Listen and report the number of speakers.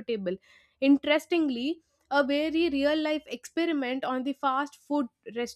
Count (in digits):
1